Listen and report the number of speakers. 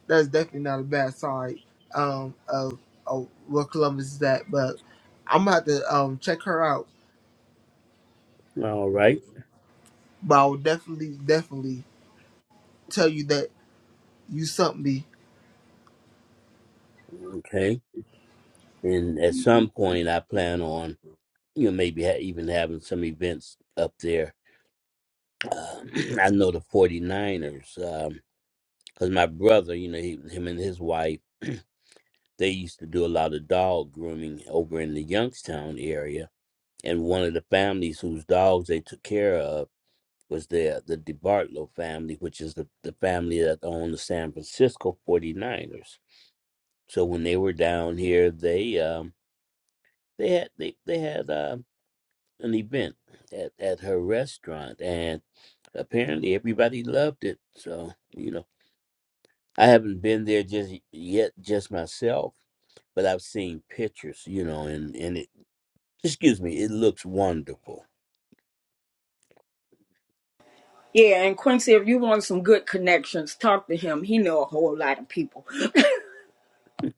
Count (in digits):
3